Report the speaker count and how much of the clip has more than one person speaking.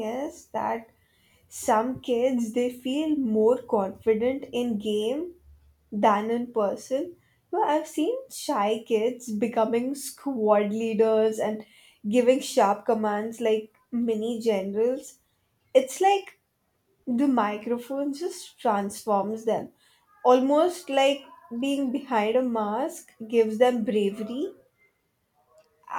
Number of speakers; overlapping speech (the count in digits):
1, no overlap